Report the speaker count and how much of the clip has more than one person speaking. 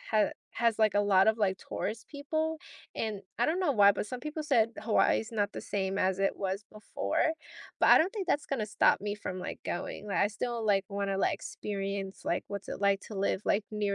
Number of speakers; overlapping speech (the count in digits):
1, no overlap